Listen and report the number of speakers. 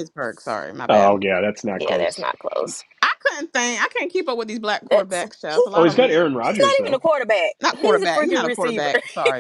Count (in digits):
3